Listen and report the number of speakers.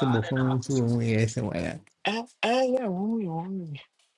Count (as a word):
two